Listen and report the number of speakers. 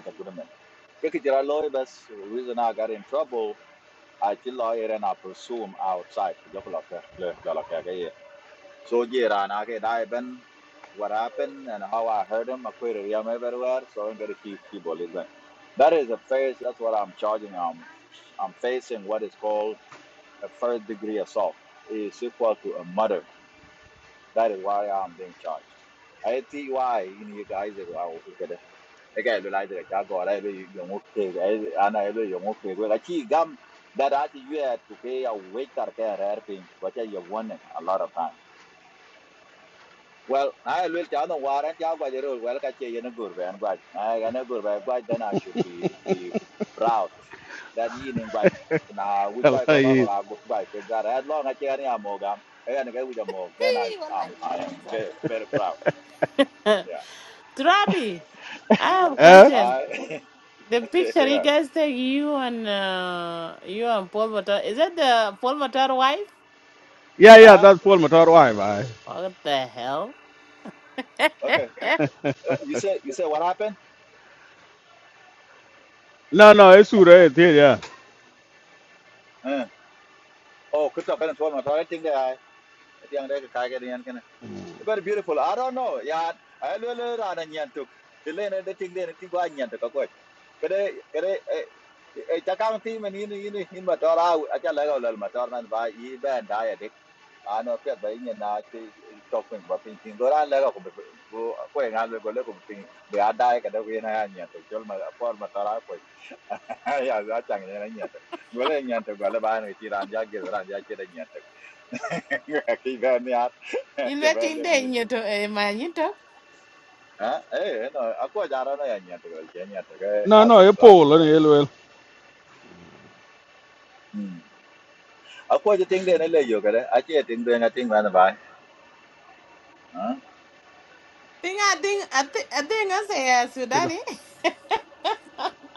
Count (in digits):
3